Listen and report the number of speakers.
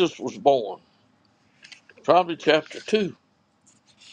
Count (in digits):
1